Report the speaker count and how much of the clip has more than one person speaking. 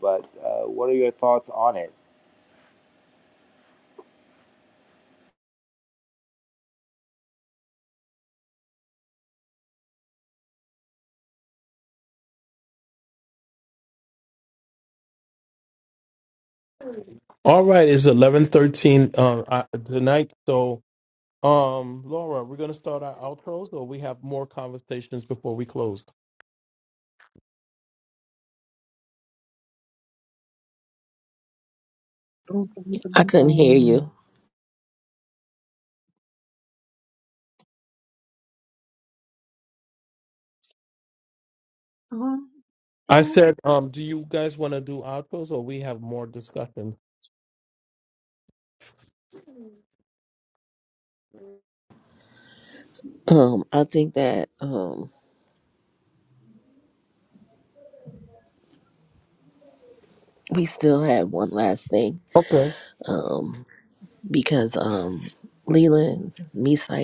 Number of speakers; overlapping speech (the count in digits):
4, about 2%